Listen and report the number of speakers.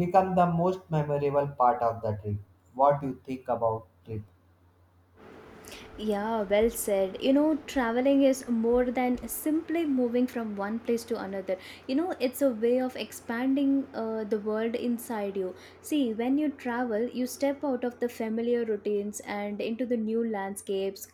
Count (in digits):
2